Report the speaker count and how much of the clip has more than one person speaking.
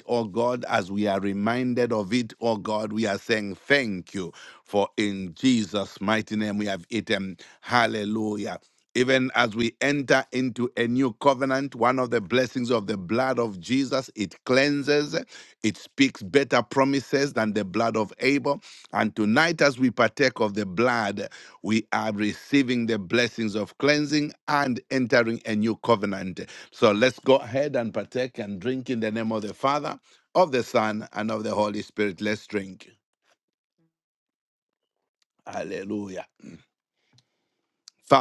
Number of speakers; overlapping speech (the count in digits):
1, no overlap